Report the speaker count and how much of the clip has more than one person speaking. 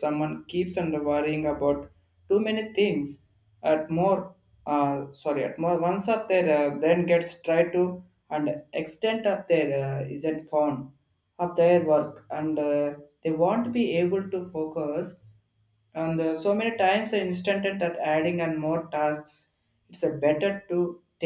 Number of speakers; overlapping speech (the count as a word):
one, no overlap